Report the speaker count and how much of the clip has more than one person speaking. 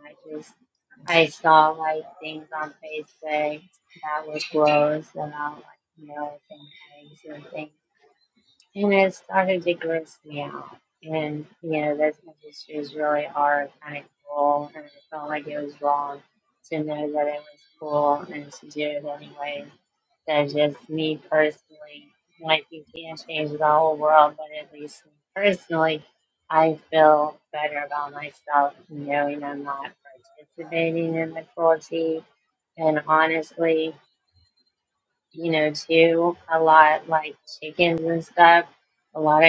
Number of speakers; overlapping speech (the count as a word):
one, no overlap